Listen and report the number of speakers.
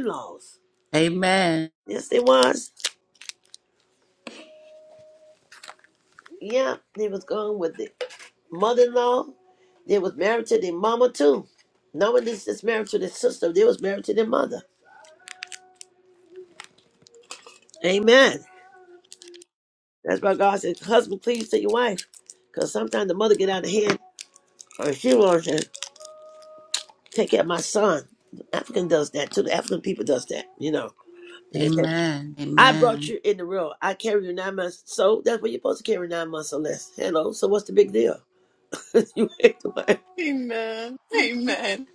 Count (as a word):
three